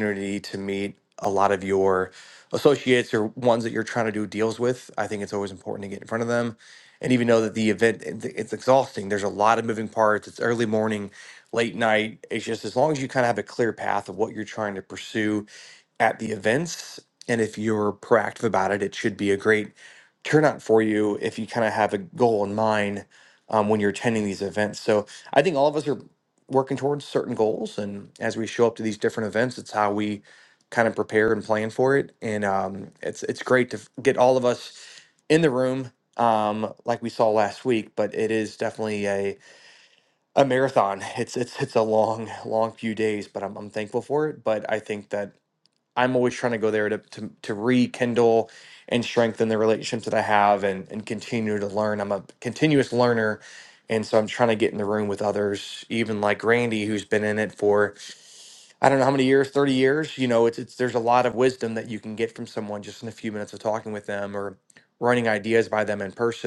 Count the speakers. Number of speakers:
one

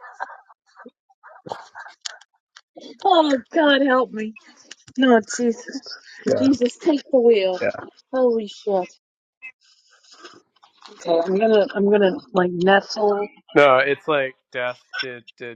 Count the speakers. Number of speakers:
two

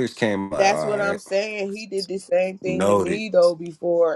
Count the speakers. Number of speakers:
two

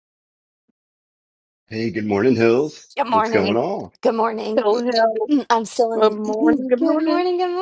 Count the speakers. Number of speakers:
three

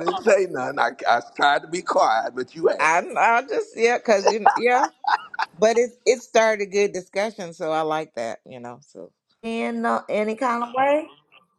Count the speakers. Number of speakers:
three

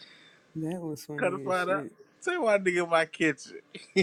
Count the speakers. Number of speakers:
two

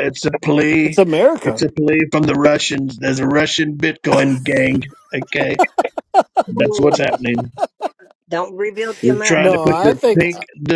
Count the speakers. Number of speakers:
three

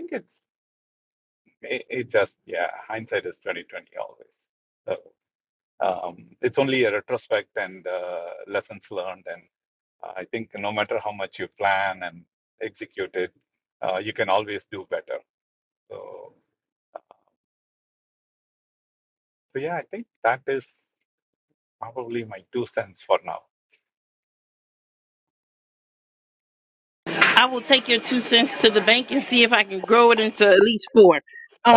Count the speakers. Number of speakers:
two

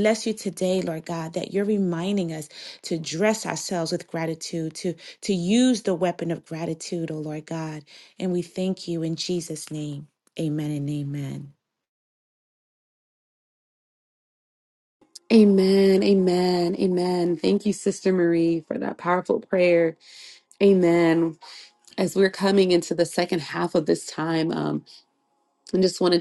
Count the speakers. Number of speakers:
two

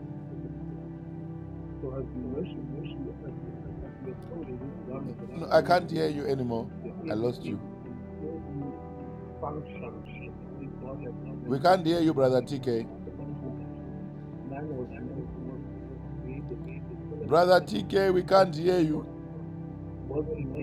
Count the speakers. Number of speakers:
two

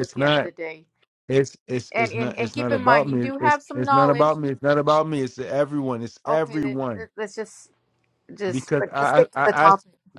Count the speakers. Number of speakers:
two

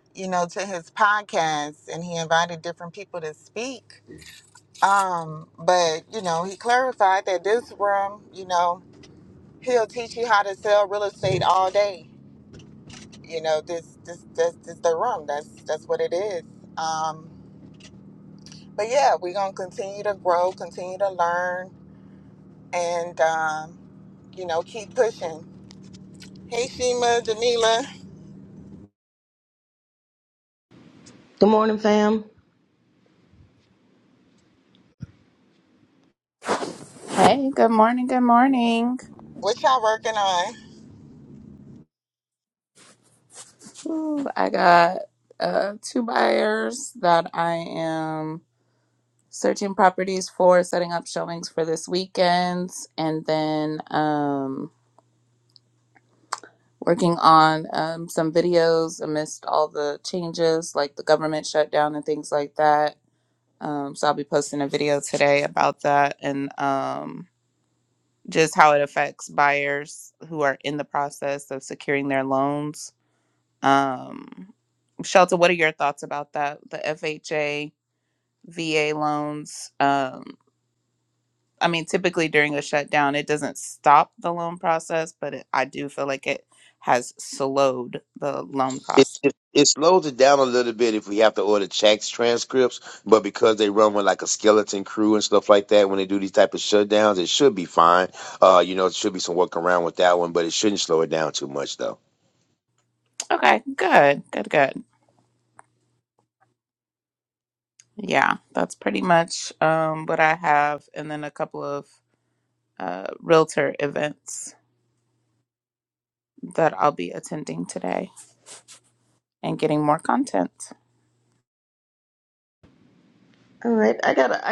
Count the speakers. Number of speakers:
four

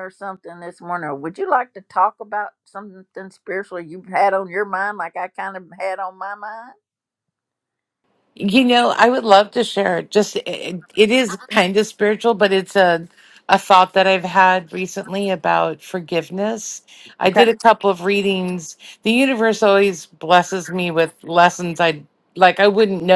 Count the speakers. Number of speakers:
two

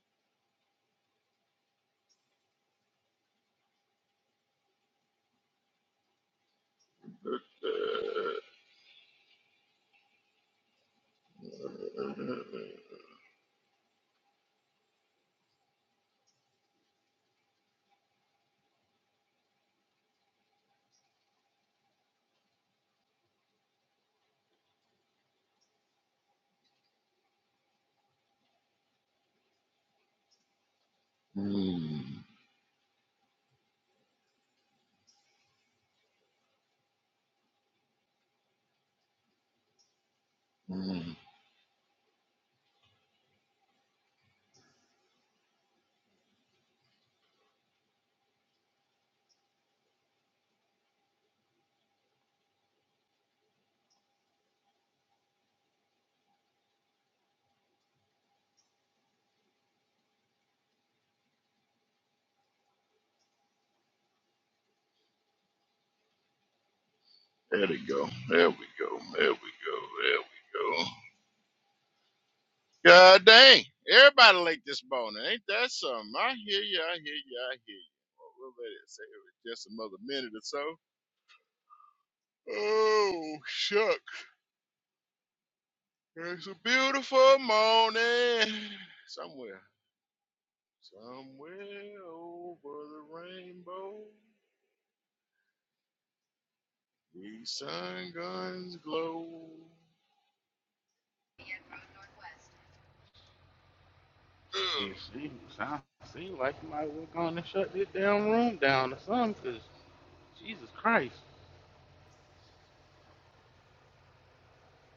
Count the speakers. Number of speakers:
two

